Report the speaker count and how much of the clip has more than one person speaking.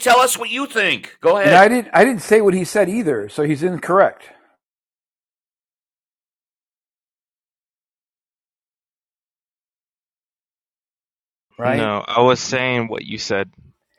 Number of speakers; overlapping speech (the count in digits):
3, about 4%